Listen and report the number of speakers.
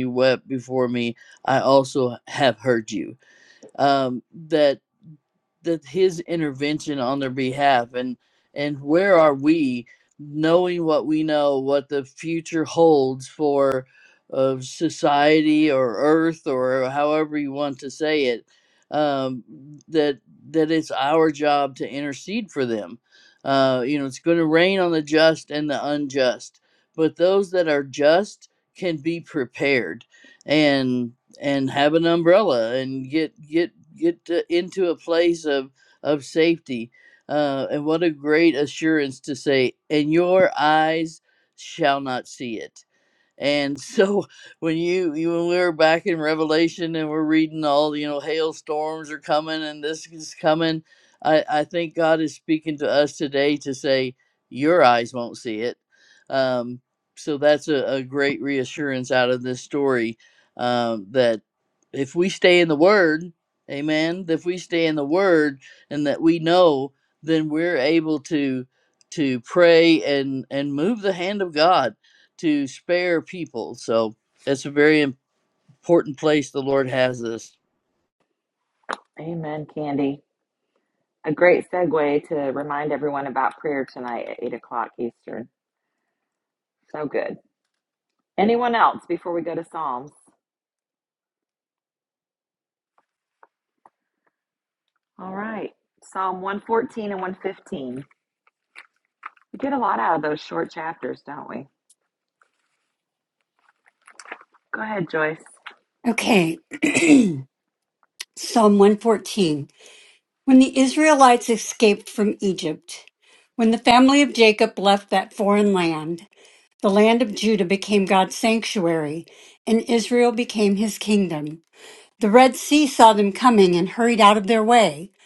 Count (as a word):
three